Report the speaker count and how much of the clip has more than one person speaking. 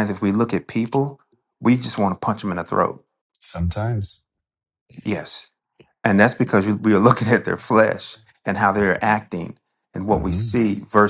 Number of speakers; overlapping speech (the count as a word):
two, about 4%